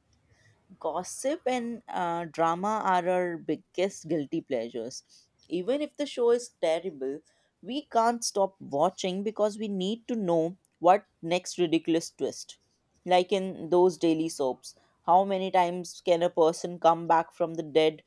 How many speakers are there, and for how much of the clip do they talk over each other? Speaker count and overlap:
1, no overlap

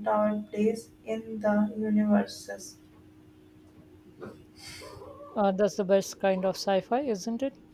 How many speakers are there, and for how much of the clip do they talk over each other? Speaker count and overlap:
2, no overlap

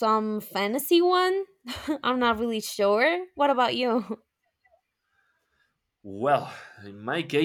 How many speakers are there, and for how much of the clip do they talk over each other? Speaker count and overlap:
2, no overlap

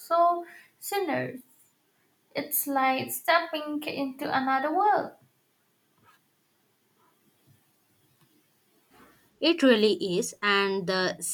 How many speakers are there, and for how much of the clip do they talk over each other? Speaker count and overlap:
2, no overlap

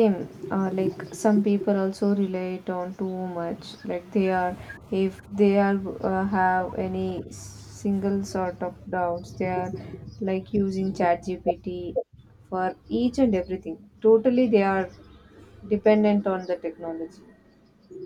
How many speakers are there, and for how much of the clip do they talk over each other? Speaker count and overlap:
1, no overlap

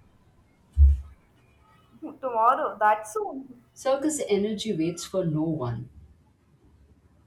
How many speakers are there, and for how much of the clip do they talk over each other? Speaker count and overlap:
2, no overlap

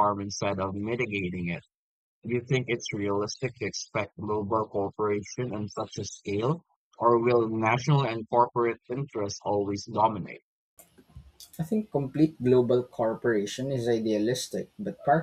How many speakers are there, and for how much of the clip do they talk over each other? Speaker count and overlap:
2, no overlap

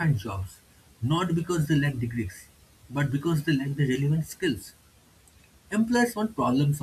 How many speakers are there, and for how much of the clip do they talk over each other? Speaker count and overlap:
1, no overlap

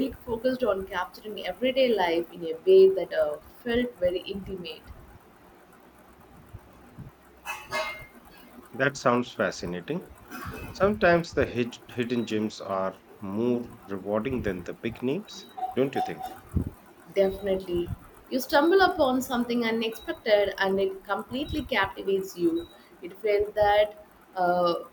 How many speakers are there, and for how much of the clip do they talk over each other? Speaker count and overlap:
2, no overlap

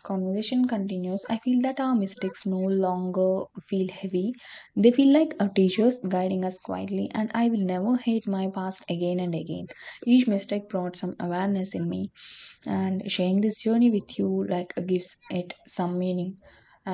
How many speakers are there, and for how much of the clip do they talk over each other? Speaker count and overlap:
1, no overlap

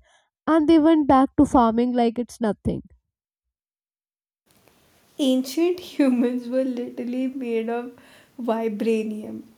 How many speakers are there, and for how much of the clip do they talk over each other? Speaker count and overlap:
2, no overlap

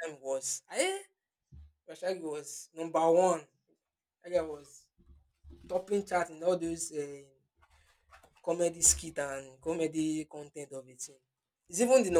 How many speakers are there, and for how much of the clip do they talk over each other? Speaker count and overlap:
1, no overlap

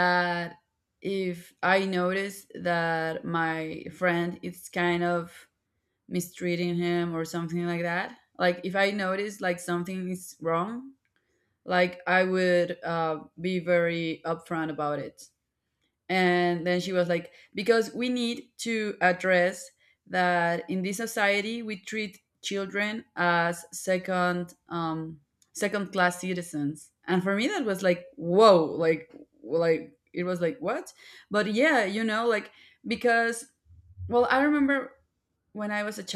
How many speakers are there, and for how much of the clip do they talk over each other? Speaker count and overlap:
1, no overlap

